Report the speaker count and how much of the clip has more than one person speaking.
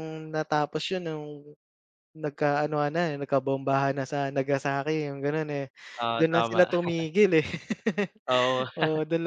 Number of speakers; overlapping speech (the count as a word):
two, about 6%